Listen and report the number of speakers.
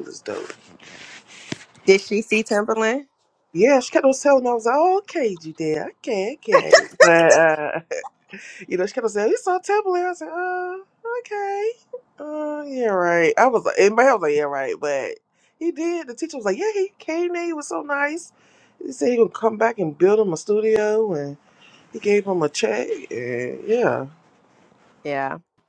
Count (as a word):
two